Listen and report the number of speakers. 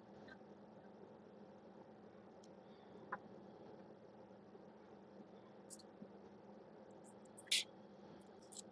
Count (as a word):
zero